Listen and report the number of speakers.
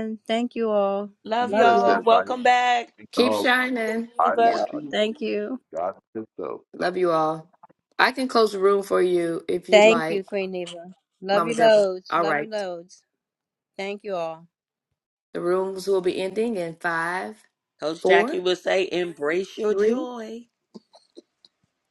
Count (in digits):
4